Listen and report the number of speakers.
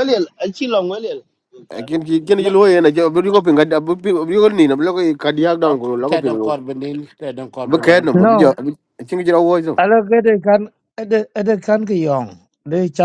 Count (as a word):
four